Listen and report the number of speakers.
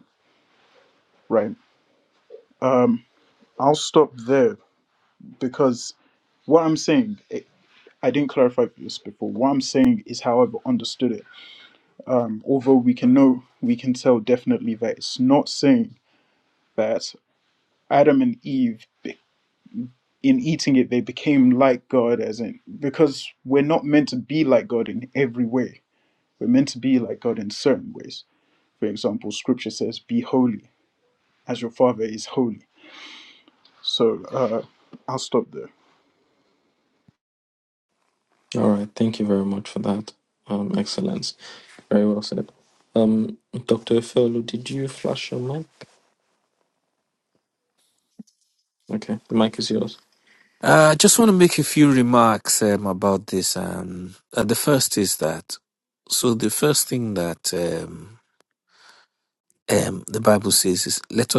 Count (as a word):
three